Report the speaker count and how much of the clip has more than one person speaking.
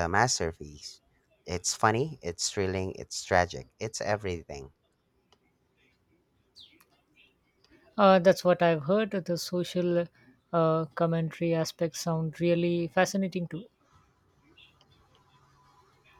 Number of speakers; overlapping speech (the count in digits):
2, no overlap